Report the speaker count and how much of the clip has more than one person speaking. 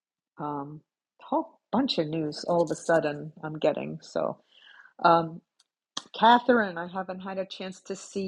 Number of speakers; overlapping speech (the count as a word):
one, no overlap